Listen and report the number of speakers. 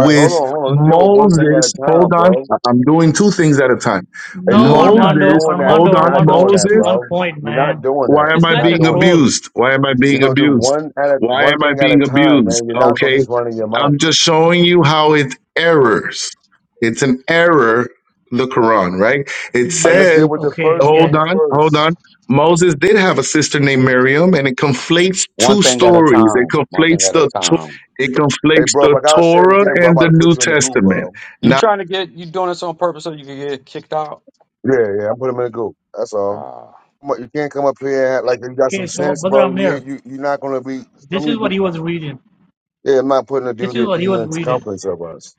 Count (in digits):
4